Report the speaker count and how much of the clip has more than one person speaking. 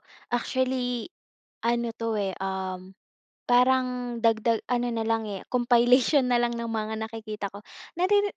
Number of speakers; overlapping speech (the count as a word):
one, no overlap